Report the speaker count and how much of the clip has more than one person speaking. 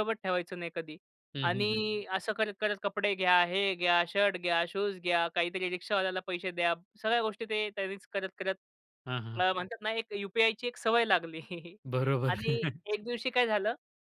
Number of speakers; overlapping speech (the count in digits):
2, about 3%